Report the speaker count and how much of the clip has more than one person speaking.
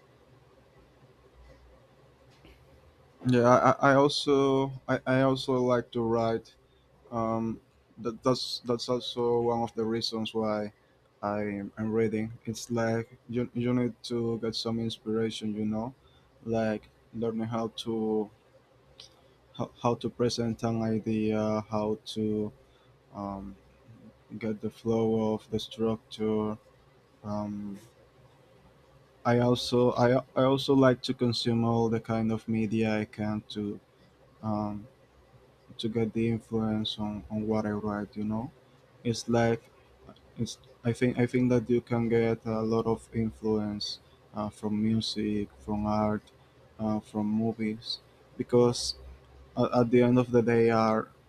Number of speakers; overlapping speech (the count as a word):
one, no overlap